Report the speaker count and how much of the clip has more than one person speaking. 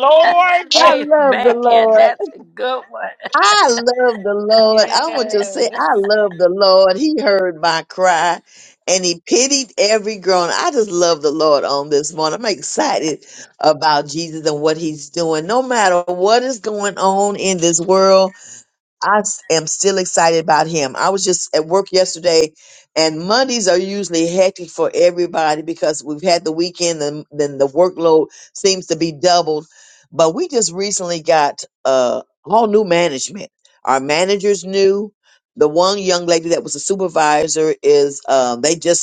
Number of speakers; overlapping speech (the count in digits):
3, about 6%